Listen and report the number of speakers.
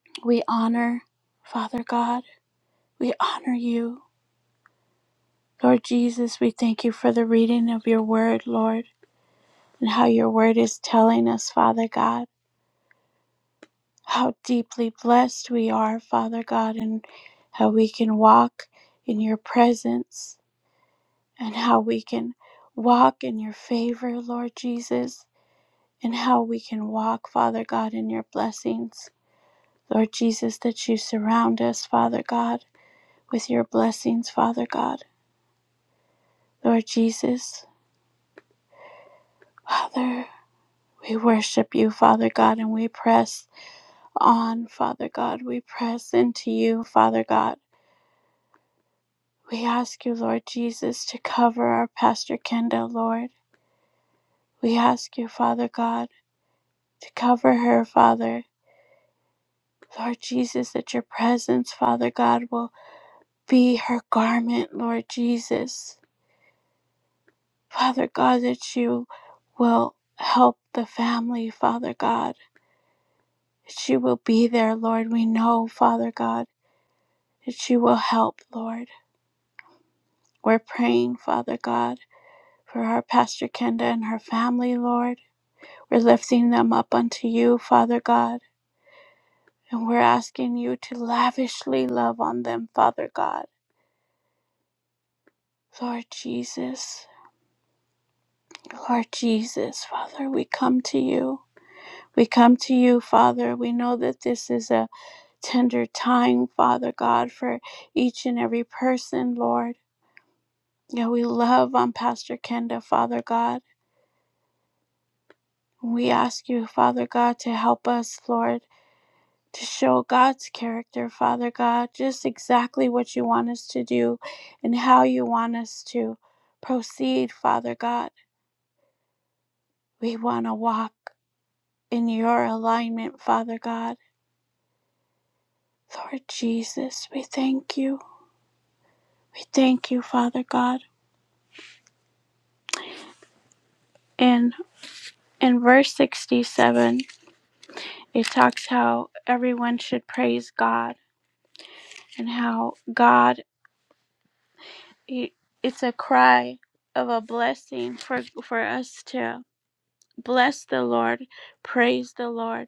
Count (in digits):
1